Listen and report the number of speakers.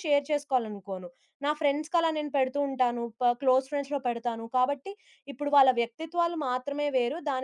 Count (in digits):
1